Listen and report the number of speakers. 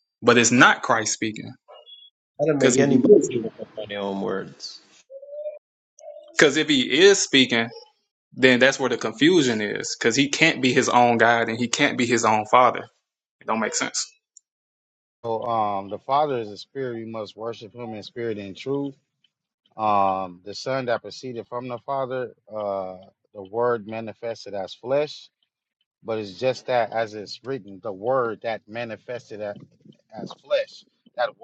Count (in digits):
3